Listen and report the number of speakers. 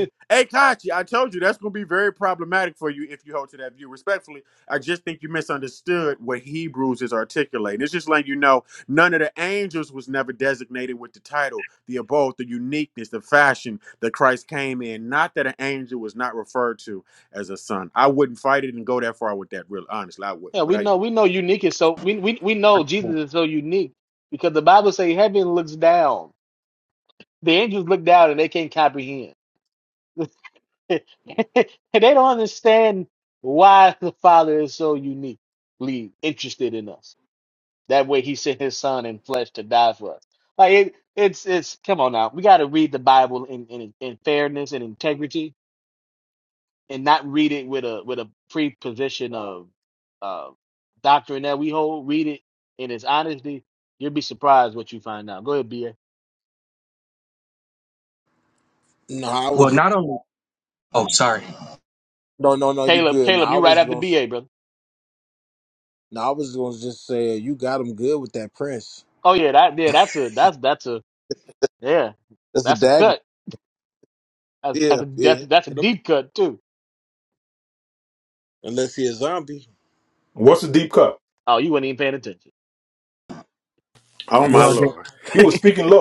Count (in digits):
5